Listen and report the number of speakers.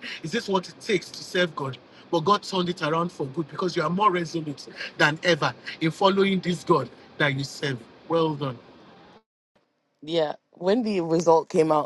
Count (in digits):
2